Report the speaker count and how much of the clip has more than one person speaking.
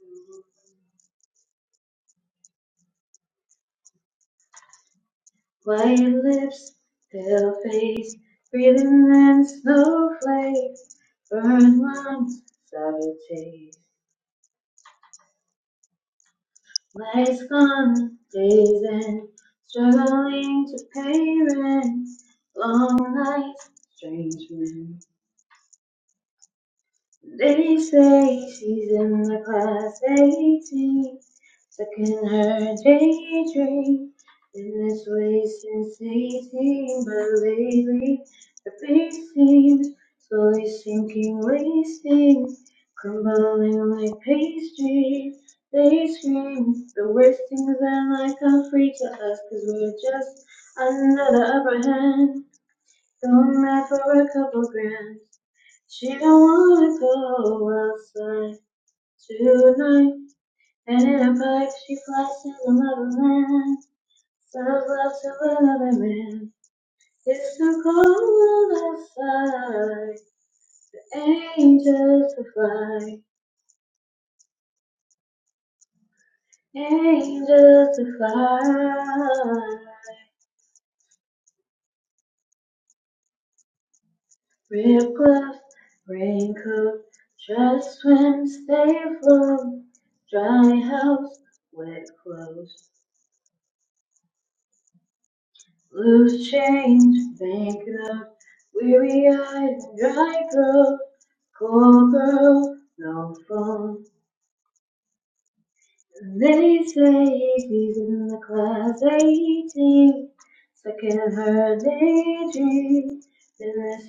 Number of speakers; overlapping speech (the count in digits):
1, no overlap